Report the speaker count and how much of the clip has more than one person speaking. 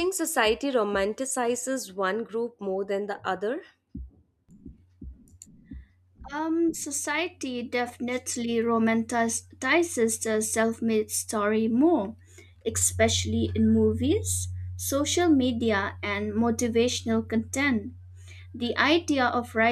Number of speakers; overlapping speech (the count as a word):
two, no overlap